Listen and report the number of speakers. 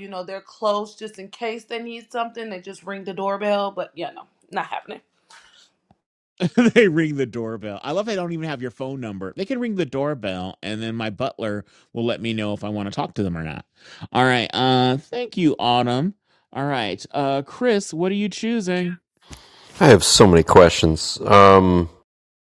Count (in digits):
3